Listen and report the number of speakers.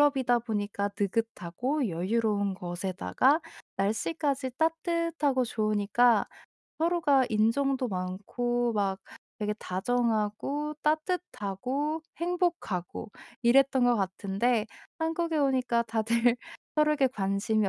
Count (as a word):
one